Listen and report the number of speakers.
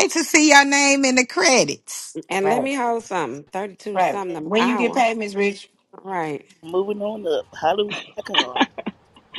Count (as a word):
four